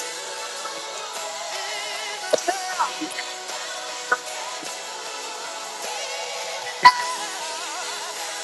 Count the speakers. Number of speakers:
0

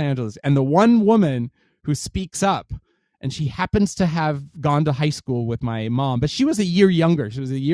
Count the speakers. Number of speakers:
1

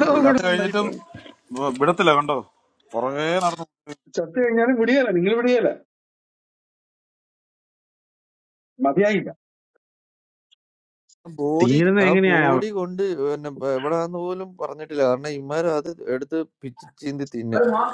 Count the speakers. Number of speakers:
3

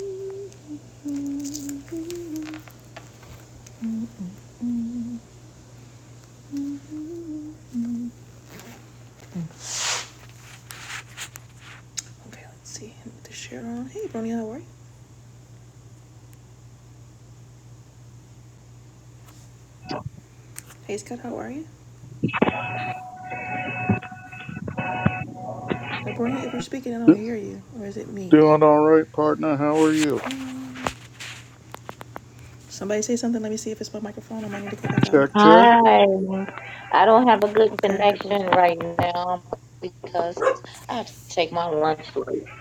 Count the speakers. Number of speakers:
3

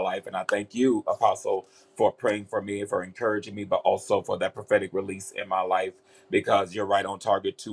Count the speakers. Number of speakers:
1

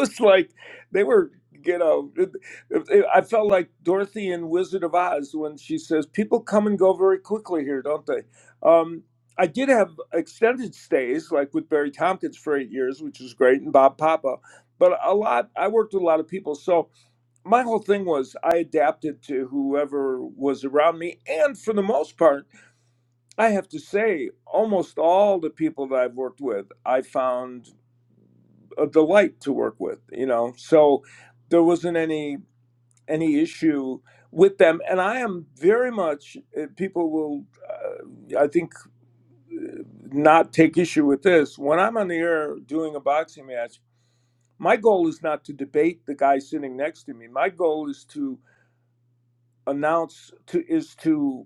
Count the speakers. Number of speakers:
1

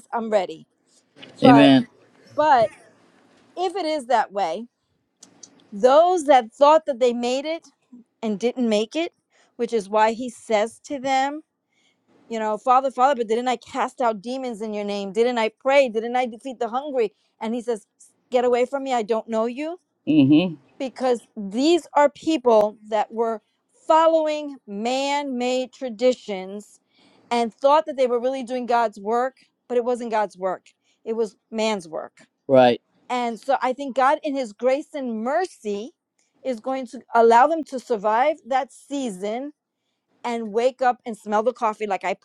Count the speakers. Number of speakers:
2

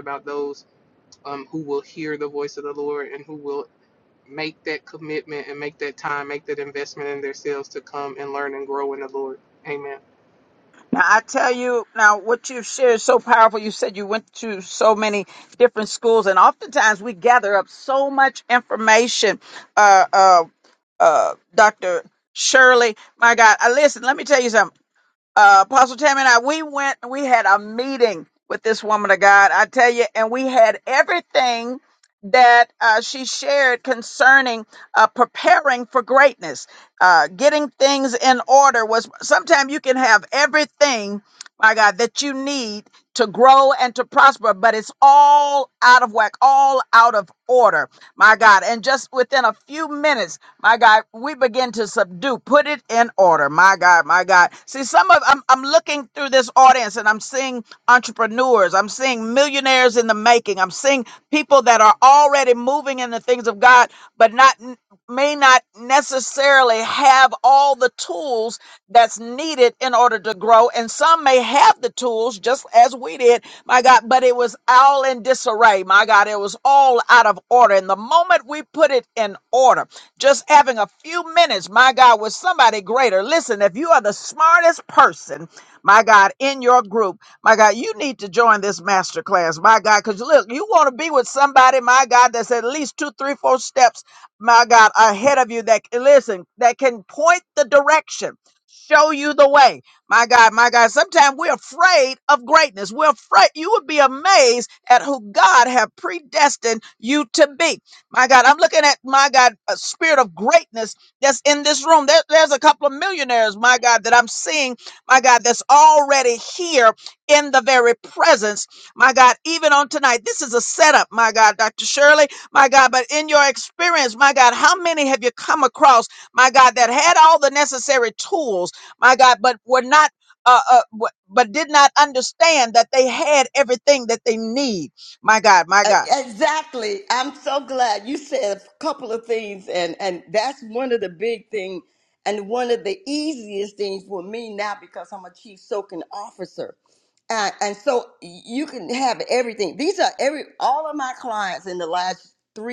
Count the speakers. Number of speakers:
3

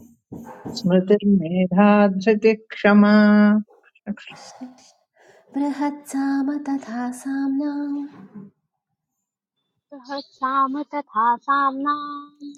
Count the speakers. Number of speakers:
3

